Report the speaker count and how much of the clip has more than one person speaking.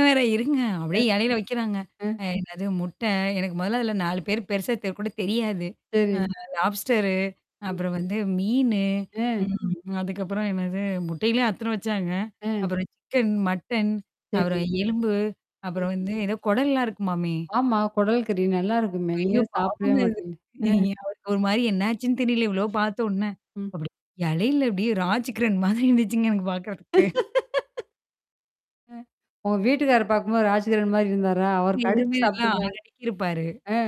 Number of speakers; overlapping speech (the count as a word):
two, about 9%